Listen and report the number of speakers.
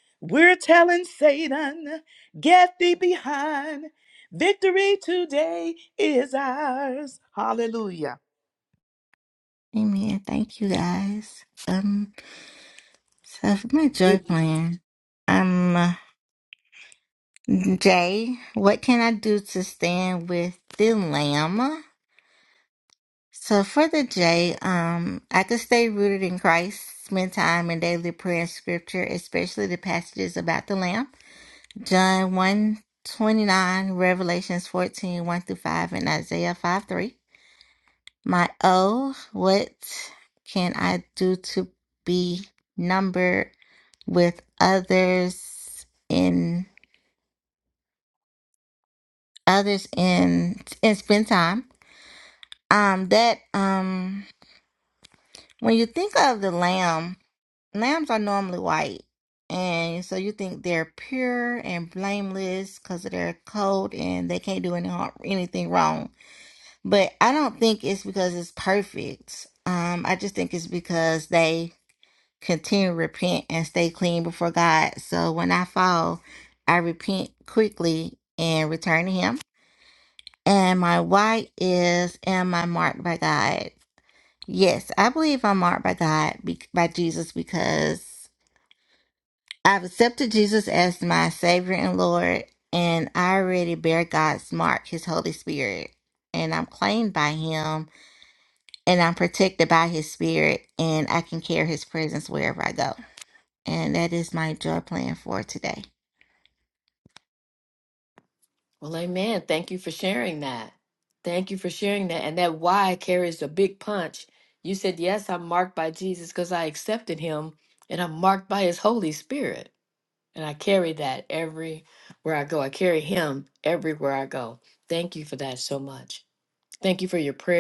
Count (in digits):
3